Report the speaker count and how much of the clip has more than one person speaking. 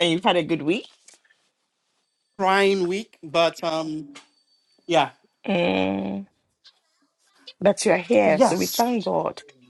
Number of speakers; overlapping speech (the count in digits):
2, about 5%